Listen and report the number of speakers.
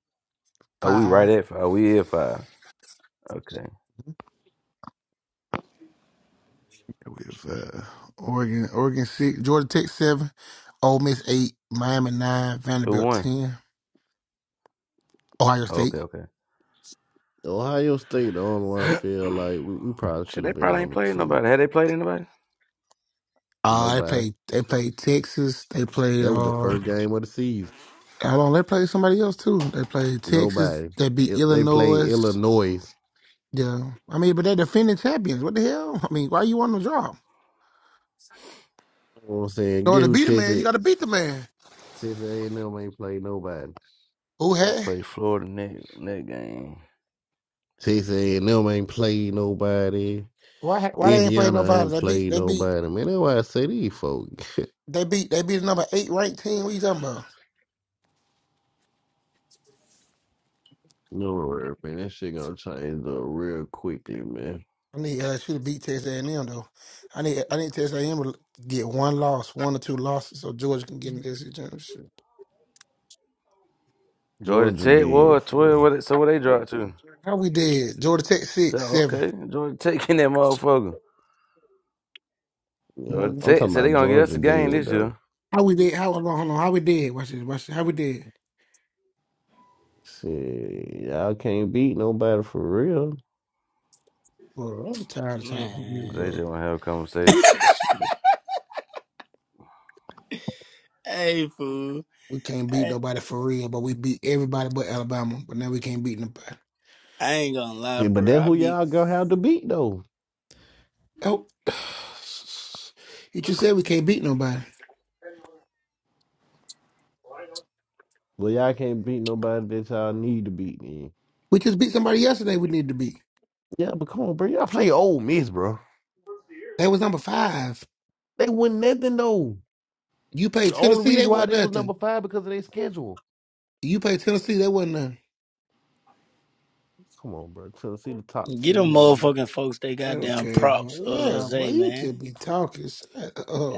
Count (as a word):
four